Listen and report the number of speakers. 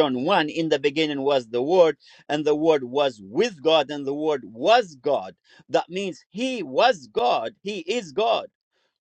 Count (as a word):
one